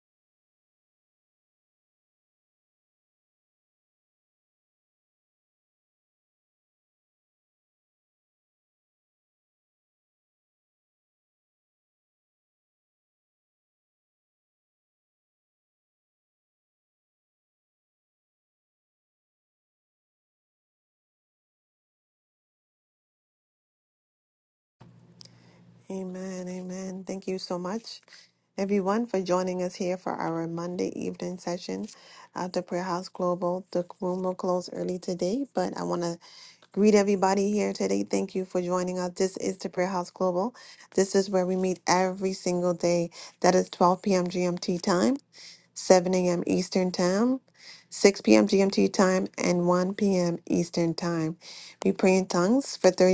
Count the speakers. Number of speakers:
1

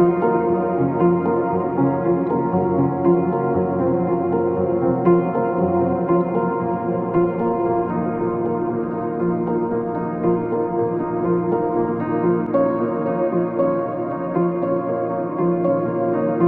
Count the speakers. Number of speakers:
0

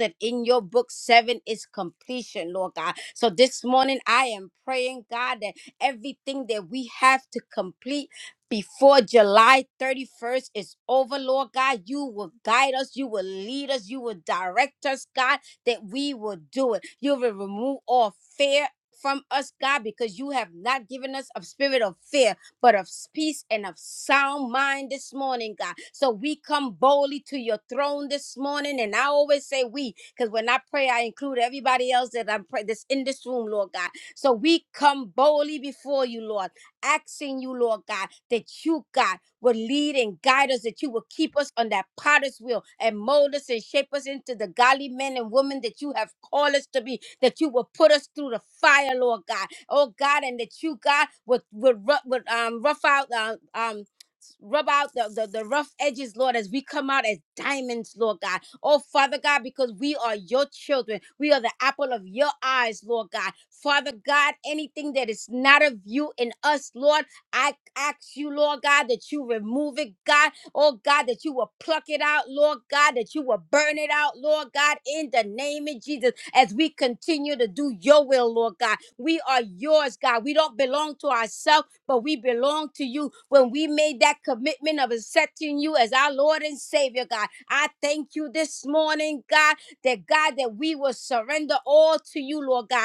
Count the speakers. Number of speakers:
1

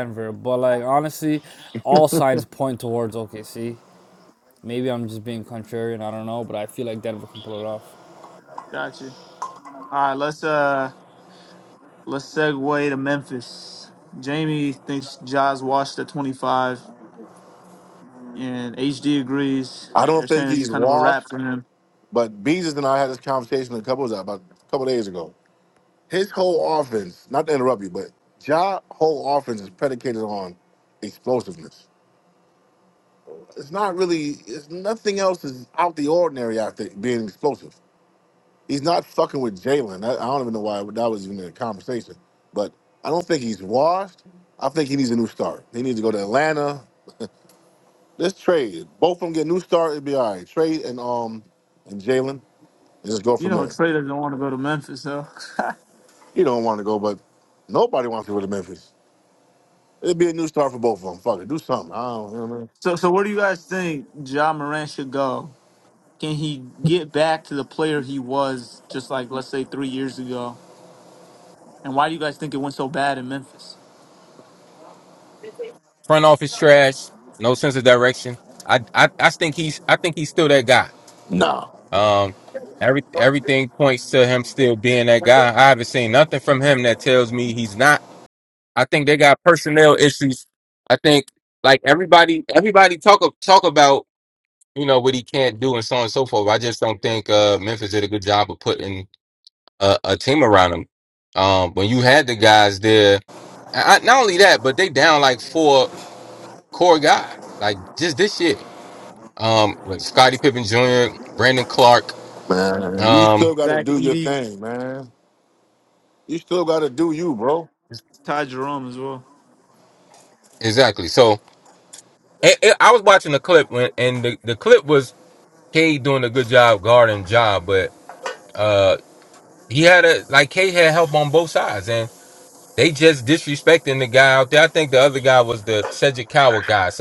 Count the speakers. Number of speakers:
4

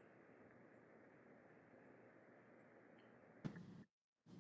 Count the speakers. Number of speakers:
0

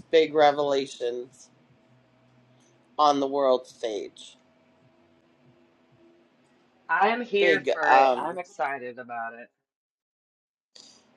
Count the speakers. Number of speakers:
2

